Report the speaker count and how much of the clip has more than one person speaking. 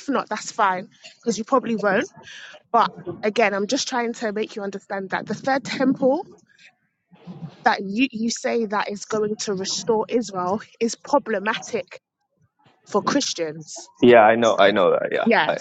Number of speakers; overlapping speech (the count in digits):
2, about 2%